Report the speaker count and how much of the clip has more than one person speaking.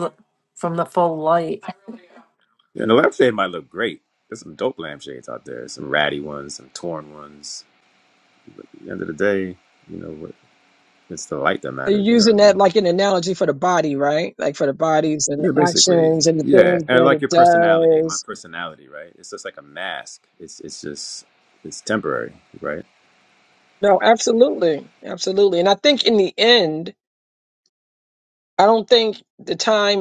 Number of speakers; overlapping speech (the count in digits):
3, about 11%